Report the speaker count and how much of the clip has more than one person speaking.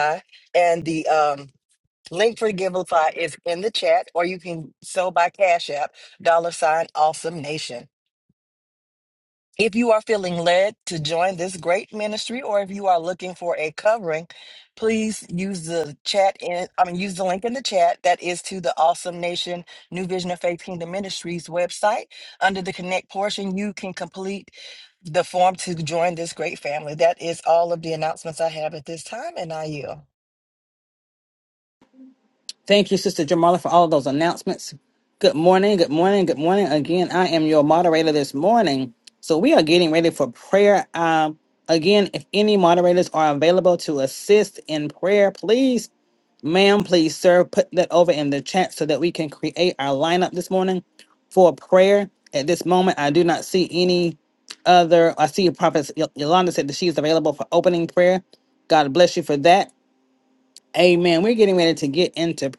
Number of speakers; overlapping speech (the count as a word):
two, no overlap